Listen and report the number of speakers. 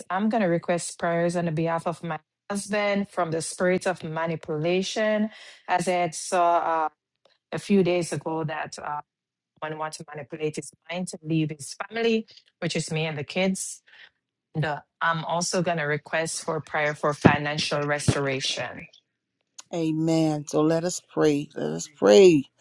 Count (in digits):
2